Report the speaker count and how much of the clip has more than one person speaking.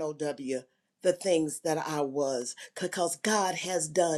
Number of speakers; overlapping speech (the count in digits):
1, no overlap